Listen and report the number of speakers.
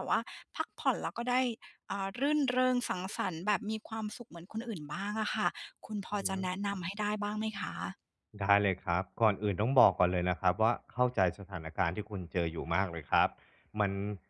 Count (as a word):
two